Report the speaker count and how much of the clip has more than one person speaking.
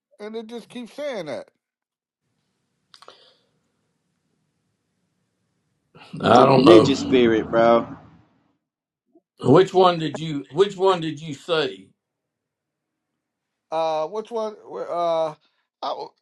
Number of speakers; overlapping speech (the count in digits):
3, about 4%